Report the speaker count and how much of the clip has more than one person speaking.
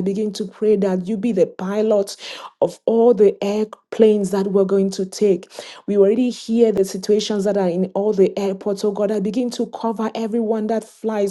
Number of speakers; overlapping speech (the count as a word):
one, no overlap